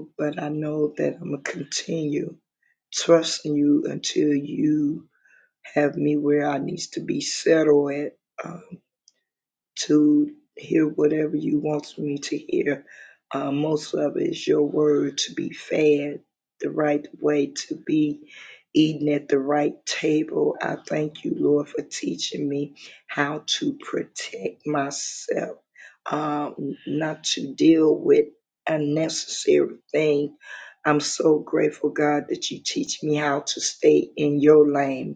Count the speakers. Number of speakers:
1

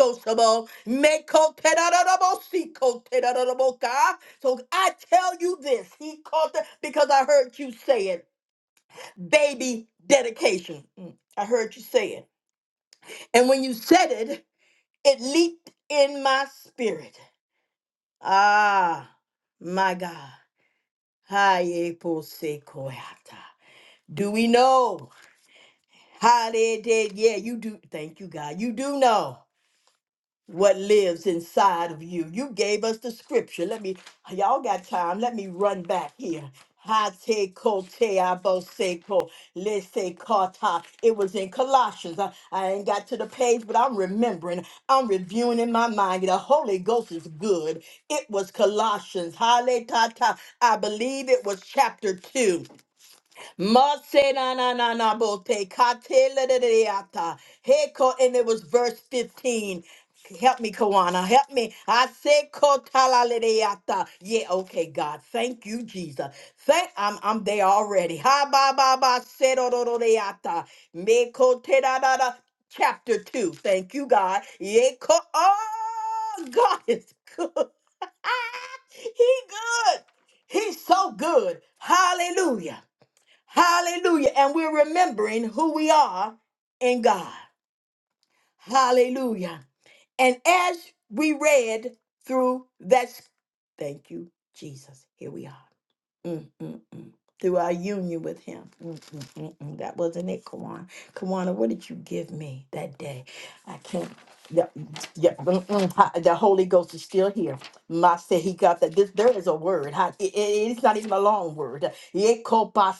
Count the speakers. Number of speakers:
1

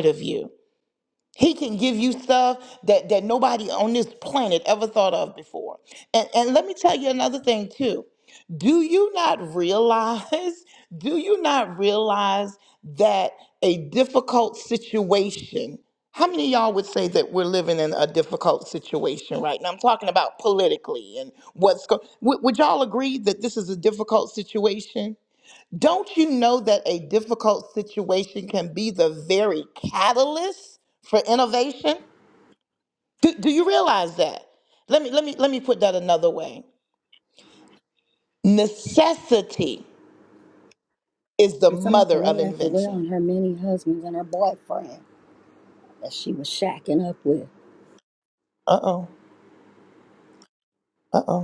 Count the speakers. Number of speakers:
2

